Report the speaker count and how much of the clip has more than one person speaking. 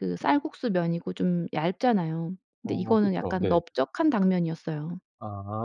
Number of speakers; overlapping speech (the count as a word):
two, about 17%